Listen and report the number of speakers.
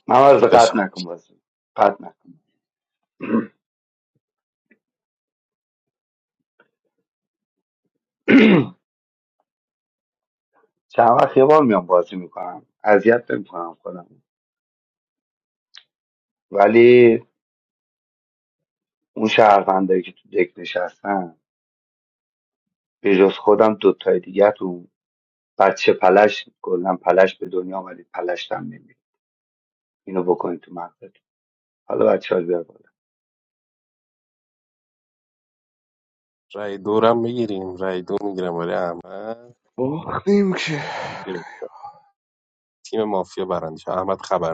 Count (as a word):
three